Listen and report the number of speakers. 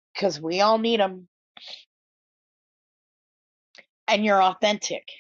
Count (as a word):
one